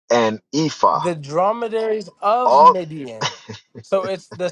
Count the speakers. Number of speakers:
2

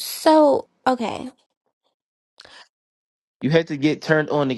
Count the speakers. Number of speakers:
2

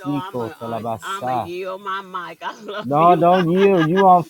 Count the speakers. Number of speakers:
2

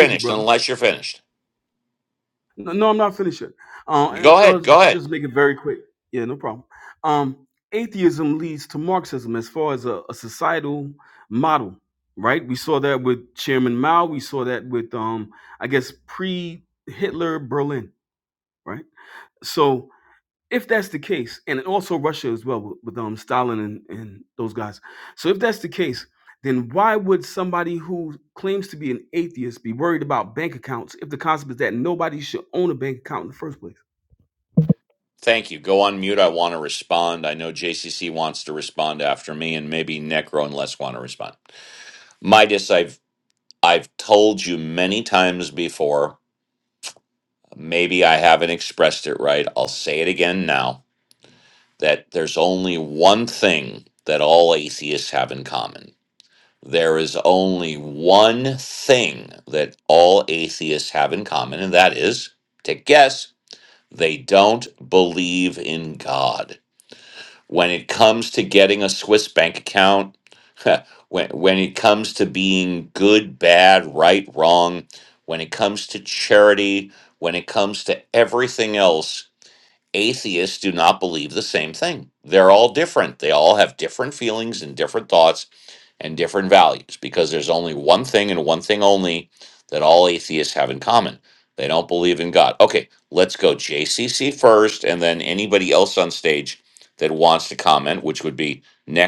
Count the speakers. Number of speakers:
2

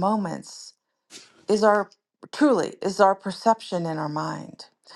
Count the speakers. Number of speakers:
1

